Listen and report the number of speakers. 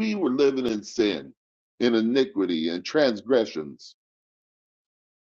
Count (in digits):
1